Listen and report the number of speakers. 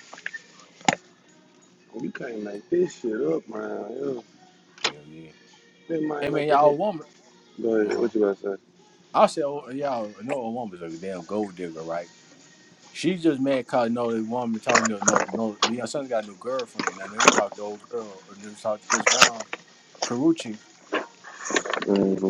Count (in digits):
2